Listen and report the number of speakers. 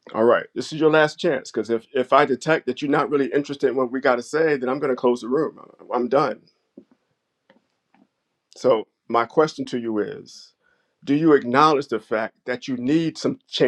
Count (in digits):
1